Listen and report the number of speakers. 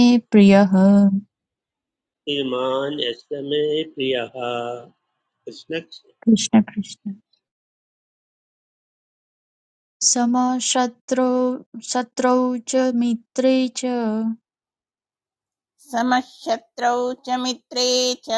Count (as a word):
three